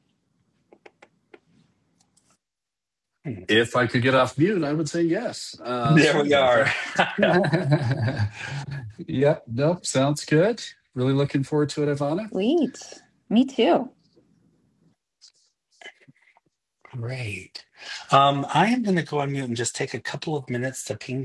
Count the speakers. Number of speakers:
three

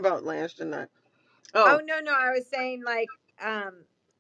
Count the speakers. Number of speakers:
two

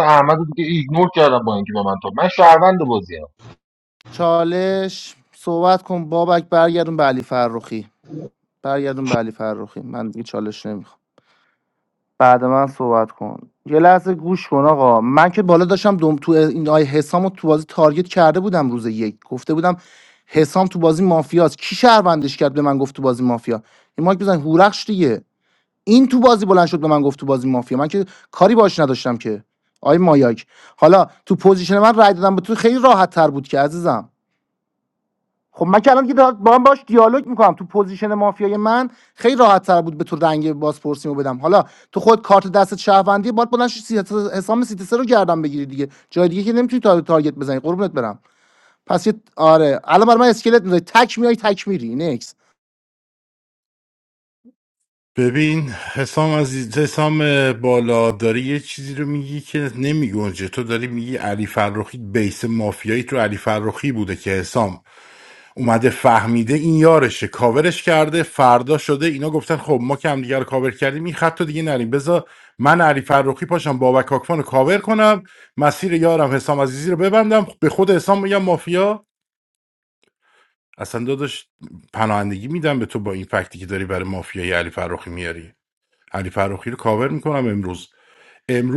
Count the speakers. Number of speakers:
three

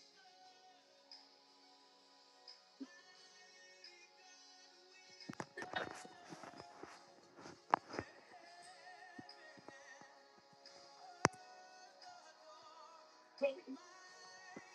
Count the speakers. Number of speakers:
zero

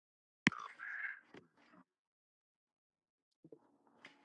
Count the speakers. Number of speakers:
zero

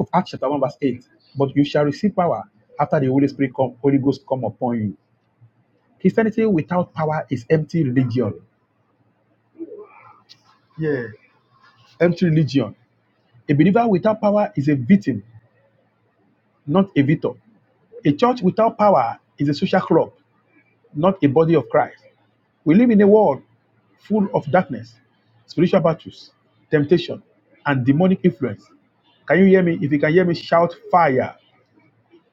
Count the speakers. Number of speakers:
one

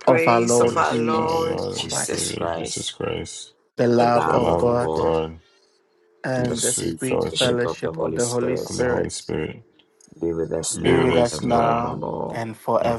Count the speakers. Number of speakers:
three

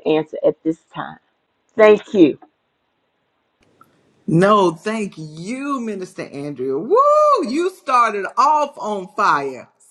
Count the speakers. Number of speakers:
two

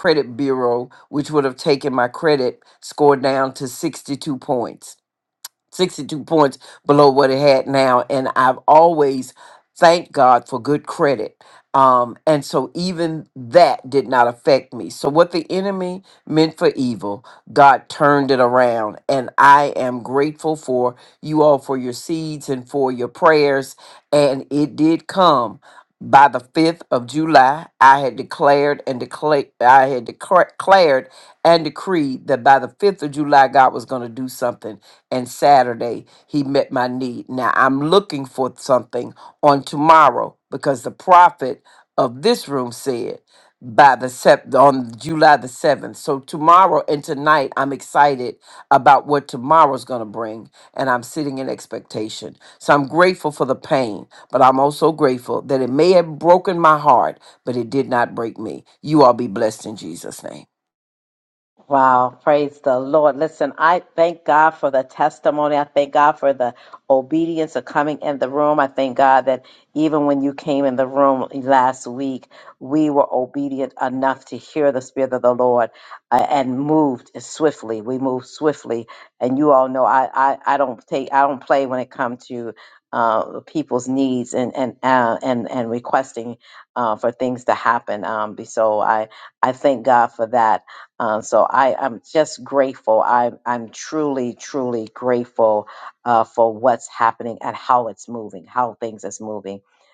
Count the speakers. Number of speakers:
two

